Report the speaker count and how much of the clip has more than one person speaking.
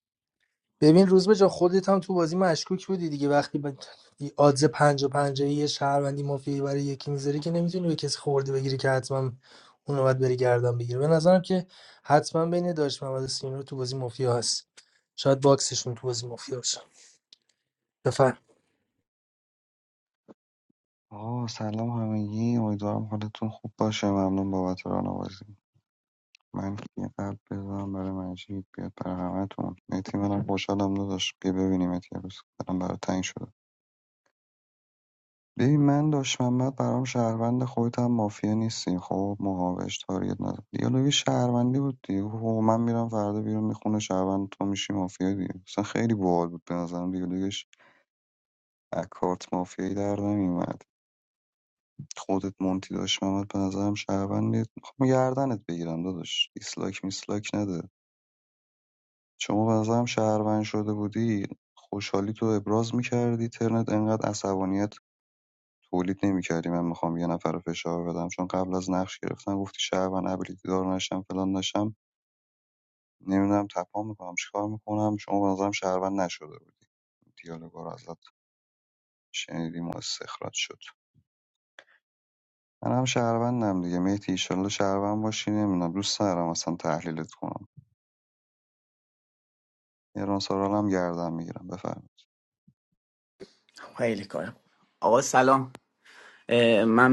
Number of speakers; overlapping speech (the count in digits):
3, no overlap